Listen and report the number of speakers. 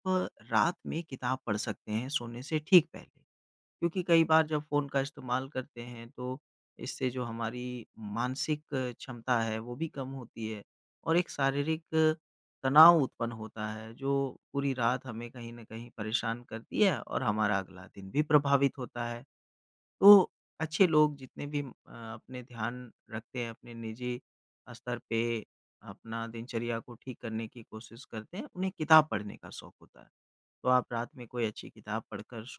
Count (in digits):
1